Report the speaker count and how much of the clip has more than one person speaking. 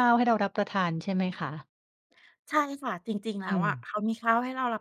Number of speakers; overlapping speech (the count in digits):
2, about 5%